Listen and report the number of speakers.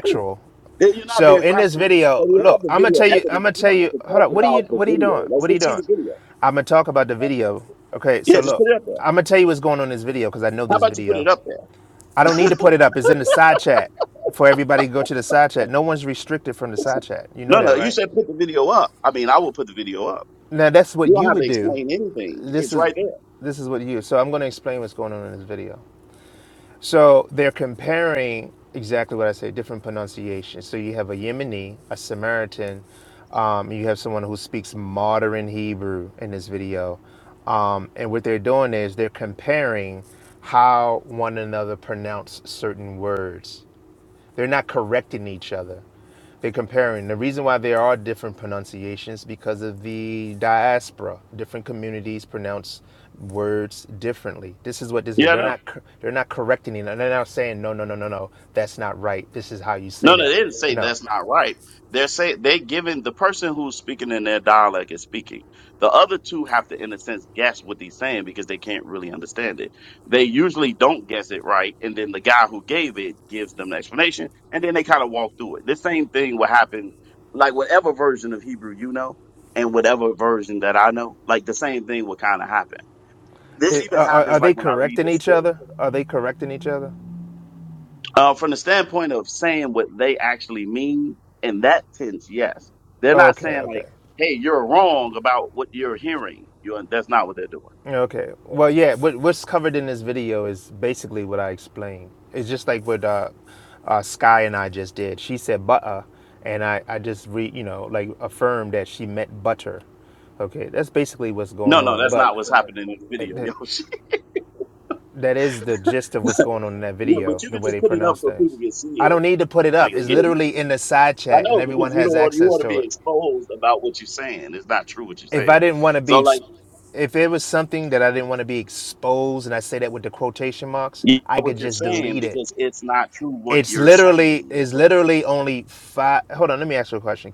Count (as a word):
two